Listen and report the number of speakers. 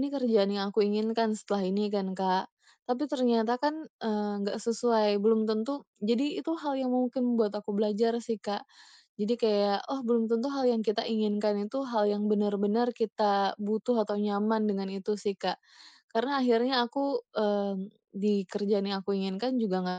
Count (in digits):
1